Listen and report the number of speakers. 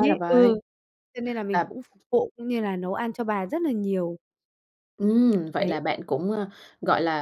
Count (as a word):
two